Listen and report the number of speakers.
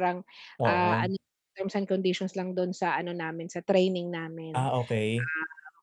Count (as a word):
two